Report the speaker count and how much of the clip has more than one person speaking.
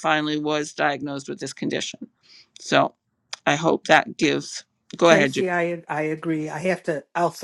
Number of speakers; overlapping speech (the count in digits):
2, about 5%